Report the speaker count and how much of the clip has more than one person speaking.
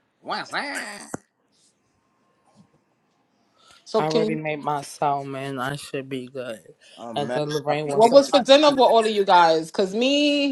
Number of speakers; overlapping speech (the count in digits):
3, about 20%